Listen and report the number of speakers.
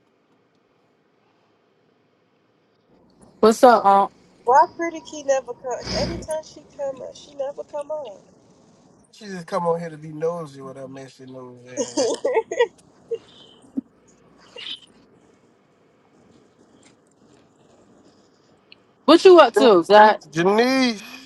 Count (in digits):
3